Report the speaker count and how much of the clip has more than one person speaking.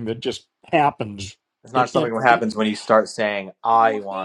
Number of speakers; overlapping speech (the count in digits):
2, about 16%